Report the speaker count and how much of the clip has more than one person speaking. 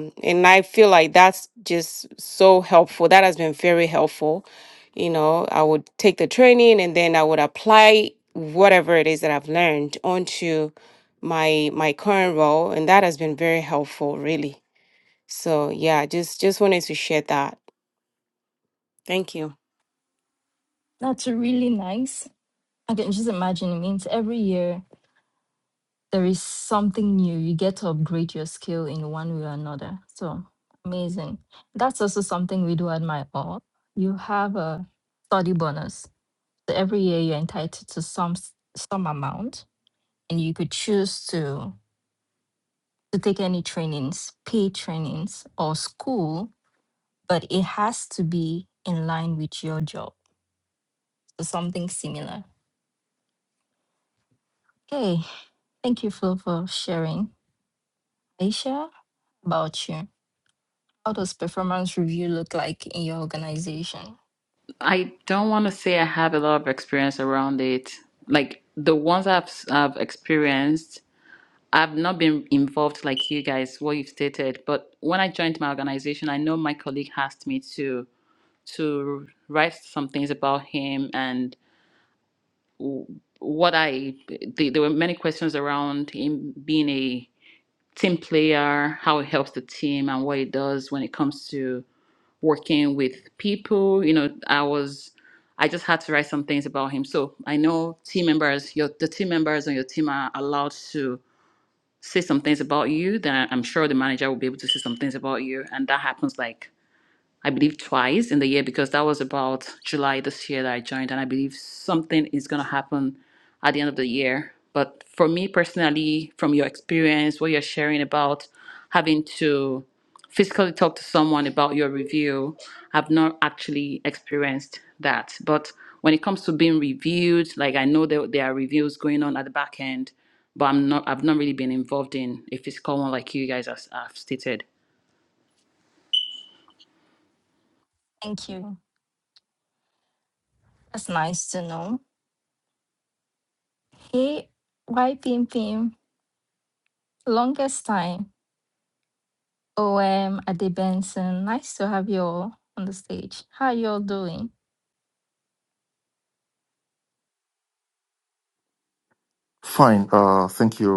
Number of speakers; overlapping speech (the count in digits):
4, no overlap